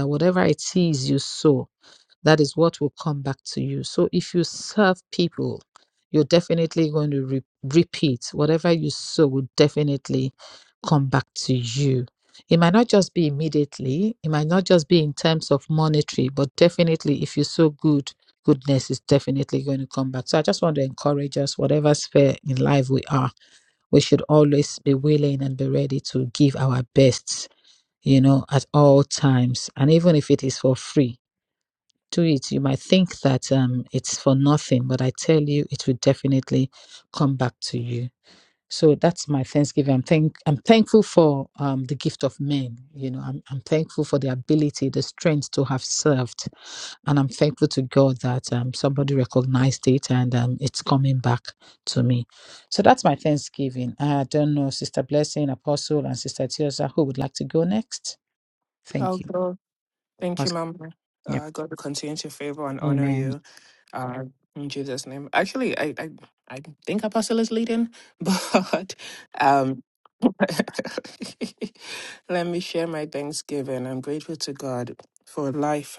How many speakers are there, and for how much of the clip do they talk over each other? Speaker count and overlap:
two, about 1%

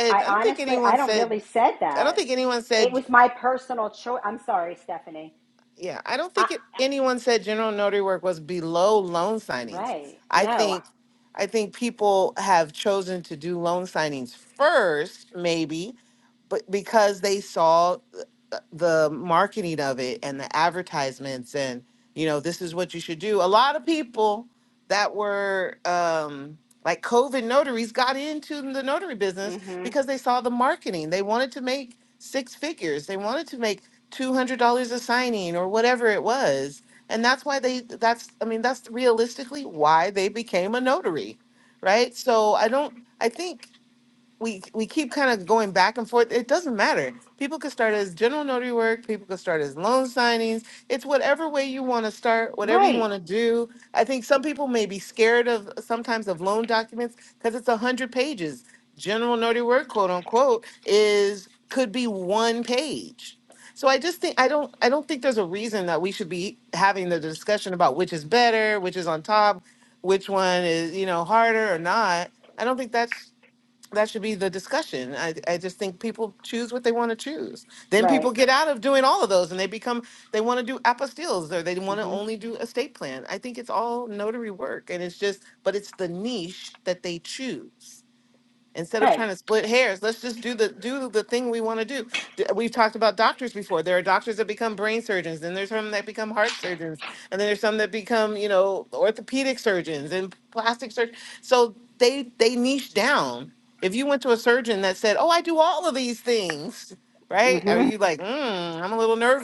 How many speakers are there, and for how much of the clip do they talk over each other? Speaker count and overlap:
two, about 4%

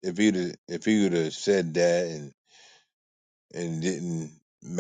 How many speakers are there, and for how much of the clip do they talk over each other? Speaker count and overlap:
one, no overlap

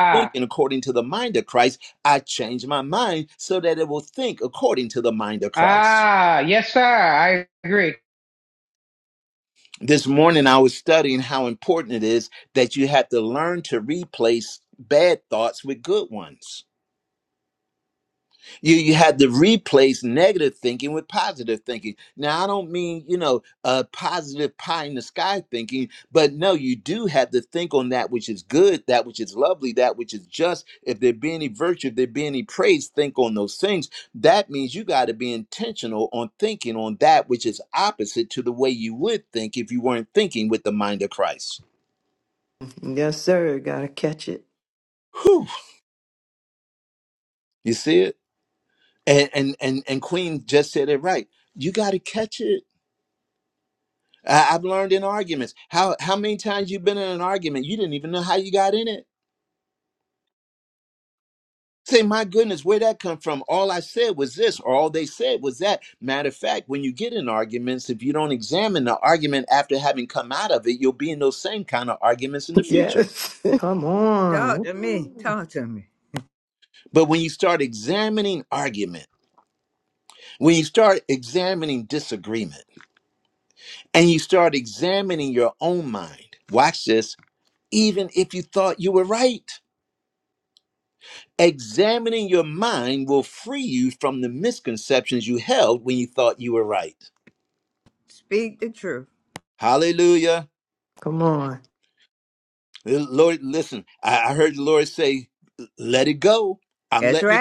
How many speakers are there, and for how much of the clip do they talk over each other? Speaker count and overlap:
four, about 2%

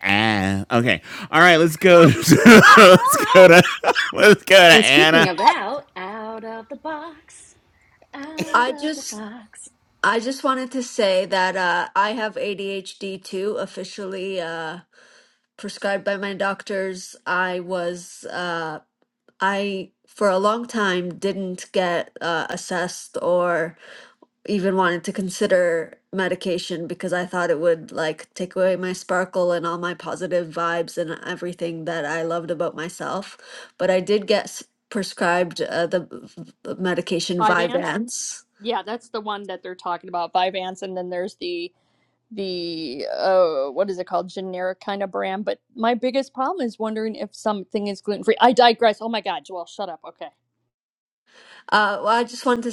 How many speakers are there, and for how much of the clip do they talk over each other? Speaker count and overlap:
four, about 3%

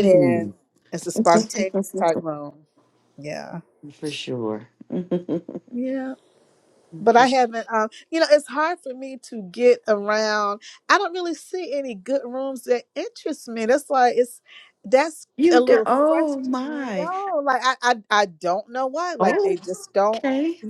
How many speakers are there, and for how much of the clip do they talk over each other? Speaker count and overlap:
two, about 12%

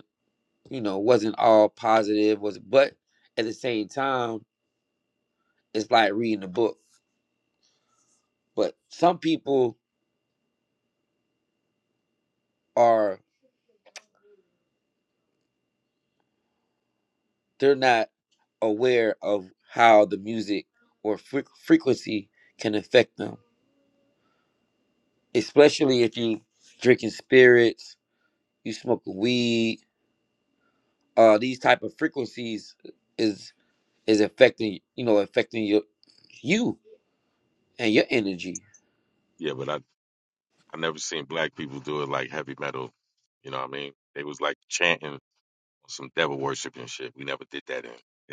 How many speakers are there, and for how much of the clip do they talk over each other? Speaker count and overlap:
two, no overlap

